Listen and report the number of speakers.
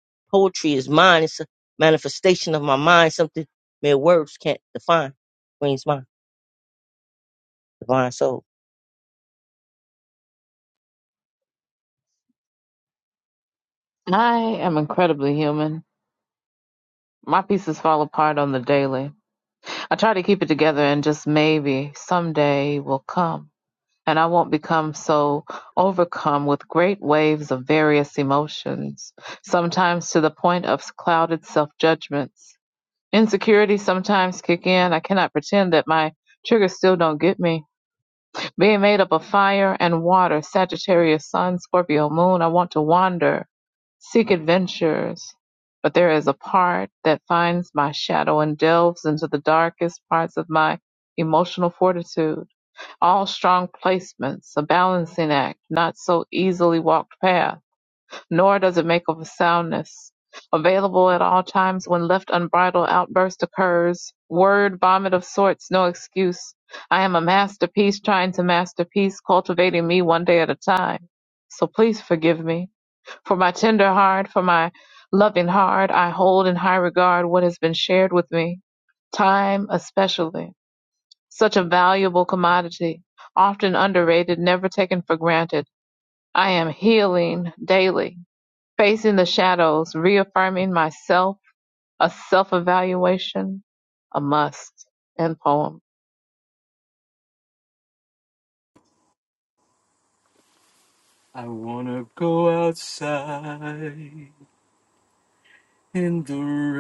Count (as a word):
three